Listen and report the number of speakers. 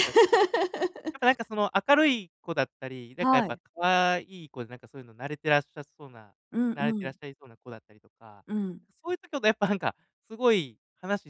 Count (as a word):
two